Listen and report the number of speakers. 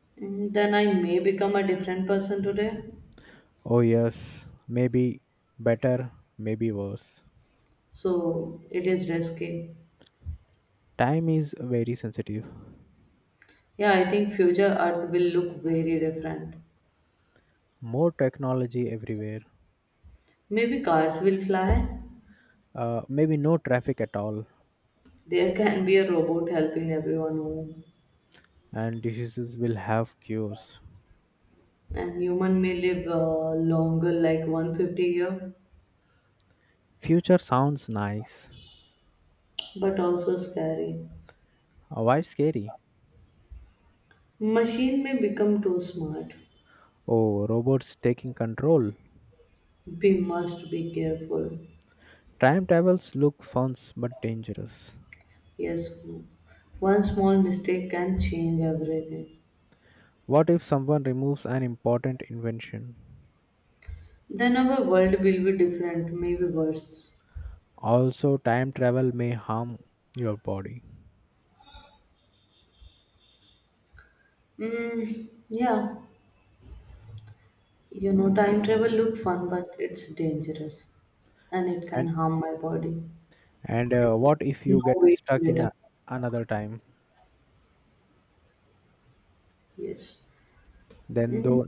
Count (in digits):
2